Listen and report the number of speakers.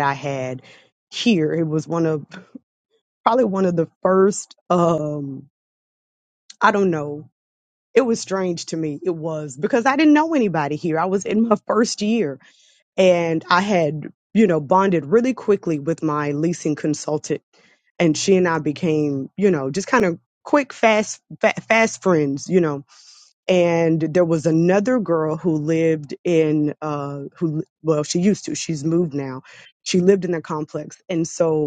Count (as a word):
one